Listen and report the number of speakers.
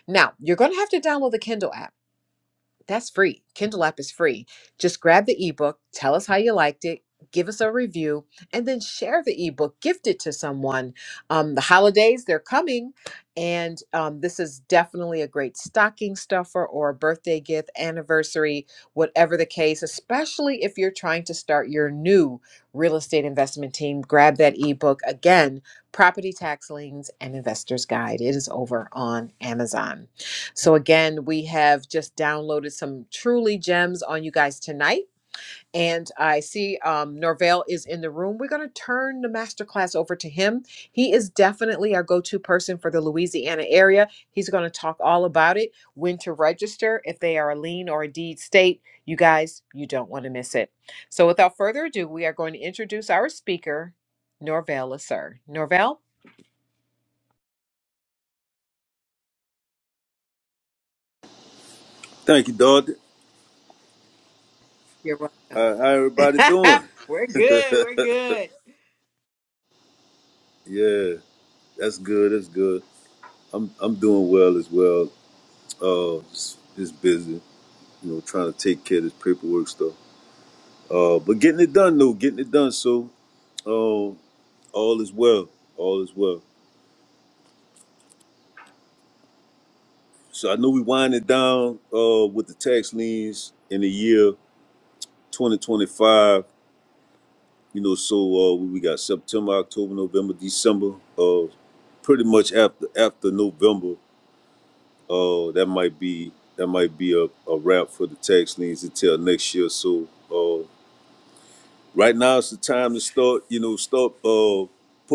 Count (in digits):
2